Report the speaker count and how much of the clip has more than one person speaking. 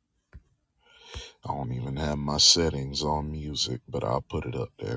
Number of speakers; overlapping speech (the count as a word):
one, no overlap